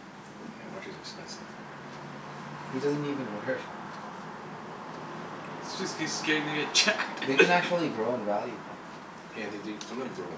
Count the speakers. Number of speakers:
three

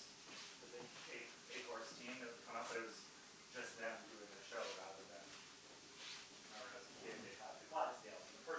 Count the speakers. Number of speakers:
one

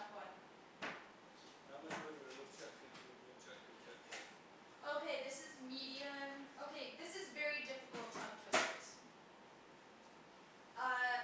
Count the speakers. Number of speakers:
two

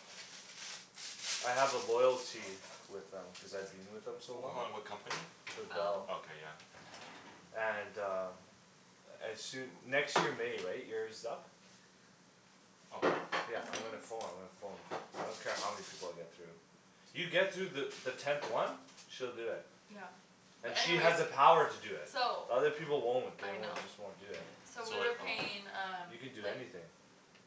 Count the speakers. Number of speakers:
three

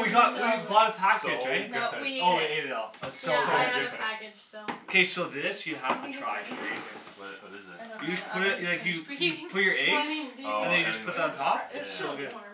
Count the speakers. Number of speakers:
four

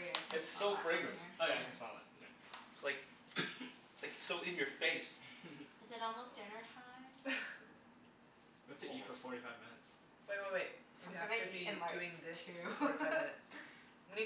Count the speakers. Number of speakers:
four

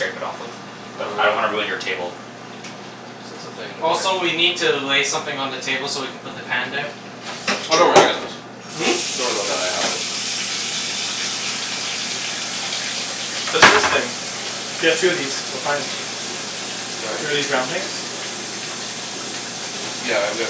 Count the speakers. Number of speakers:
four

